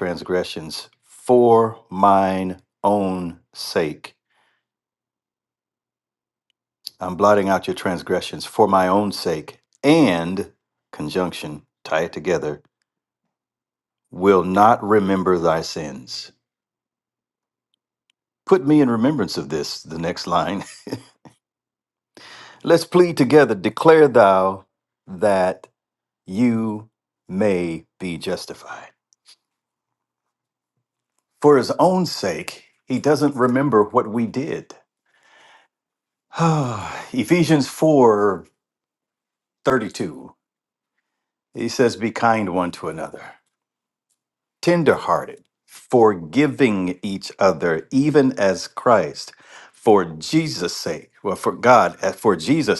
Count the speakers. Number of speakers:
1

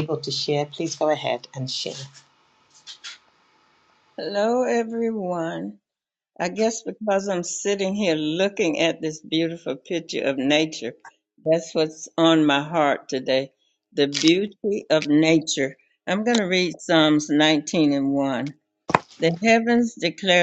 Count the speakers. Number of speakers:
2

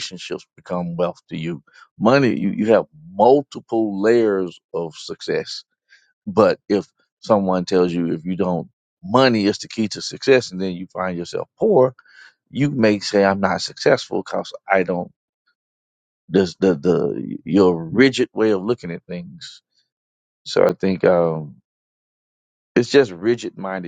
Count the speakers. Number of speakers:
1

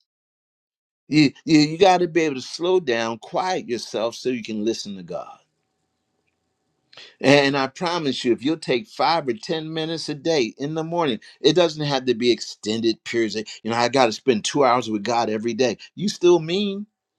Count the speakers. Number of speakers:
1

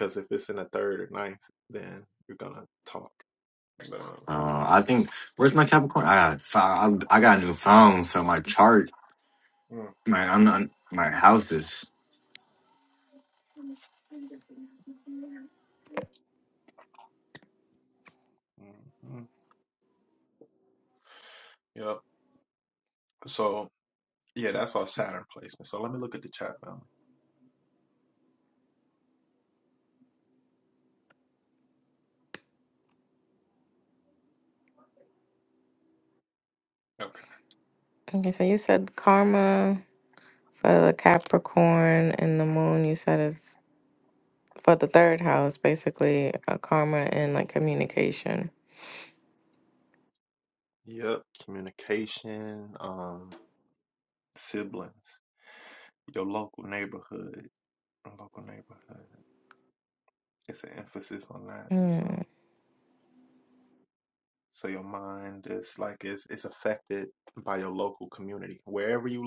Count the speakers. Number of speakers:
3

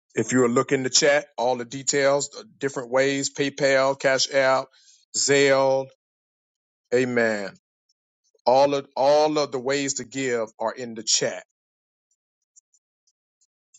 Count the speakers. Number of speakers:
1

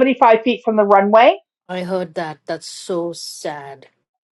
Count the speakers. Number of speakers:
2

